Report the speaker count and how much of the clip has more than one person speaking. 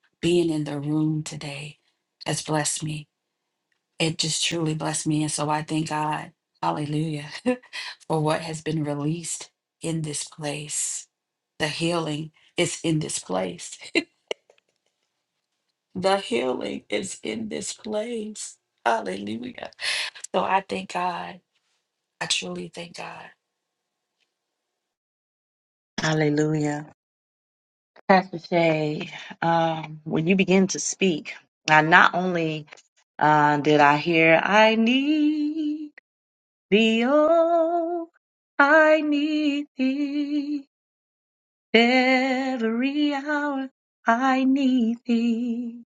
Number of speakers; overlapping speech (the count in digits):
2, no overlap